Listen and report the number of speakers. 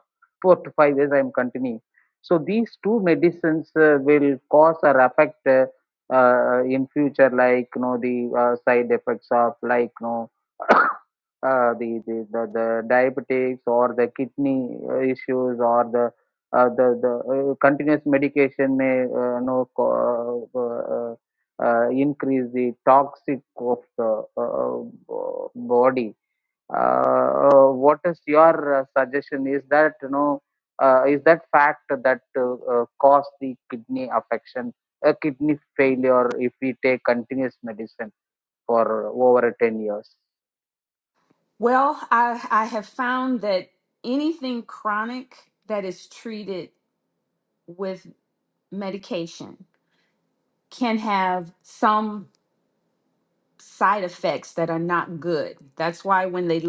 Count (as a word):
two